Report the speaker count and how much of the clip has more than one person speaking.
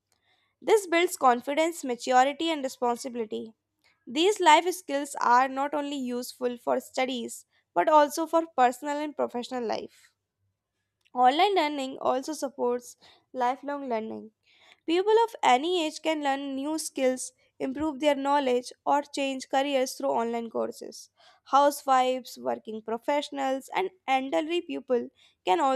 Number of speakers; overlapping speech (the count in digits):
1, no overlap